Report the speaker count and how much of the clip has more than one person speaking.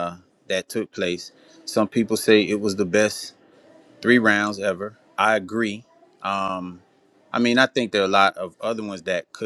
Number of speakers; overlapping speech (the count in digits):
1, no overlap